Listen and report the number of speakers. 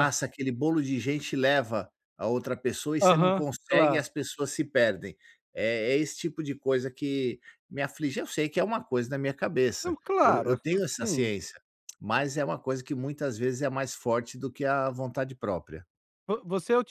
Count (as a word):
two